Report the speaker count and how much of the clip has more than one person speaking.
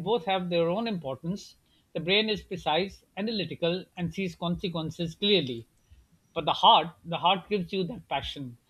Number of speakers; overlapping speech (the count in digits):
1, no overlap